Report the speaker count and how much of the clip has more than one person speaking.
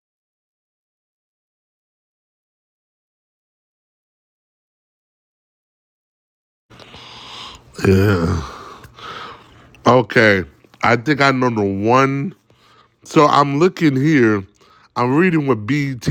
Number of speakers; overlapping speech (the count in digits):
1, no overlap